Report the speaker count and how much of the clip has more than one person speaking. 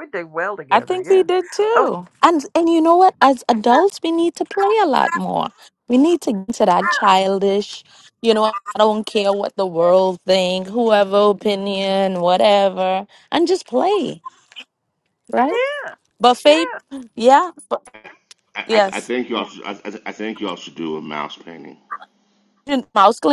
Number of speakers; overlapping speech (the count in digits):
3, about 5%